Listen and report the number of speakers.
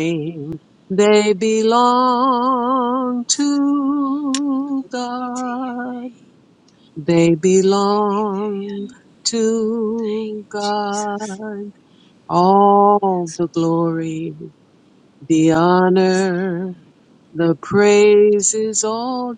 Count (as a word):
two